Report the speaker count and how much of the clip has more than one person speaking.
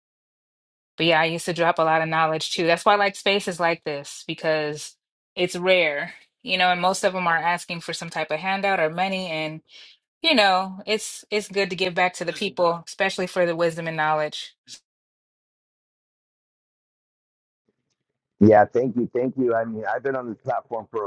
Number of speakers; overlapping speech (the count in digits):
2, no overlap